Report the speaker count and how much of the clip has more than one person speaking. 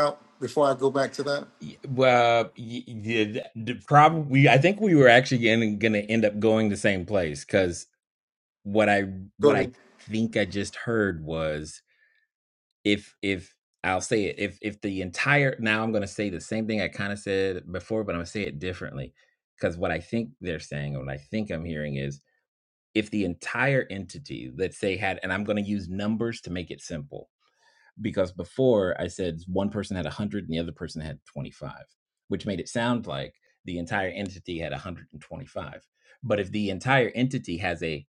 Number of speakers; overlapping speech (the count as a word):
two, about 1%